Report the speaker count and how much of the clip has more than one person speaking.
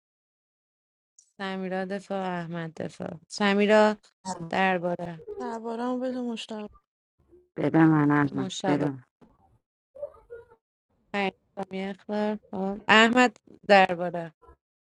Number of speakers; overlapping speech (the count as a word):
three, about 4%